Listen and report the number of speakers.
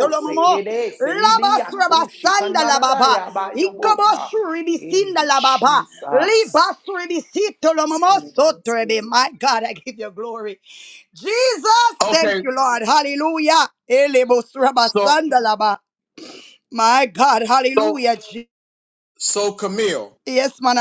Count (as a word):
three